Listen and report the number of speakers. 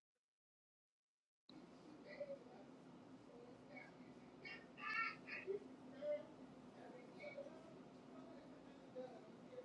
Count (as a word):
zero